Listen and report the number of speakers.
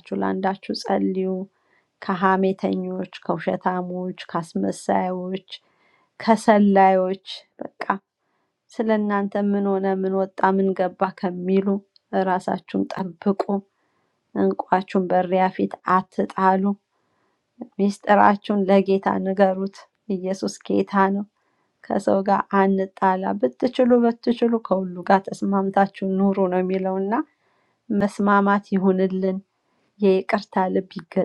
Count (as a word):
one